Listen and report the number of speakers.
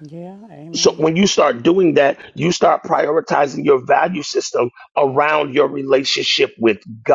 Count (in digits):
2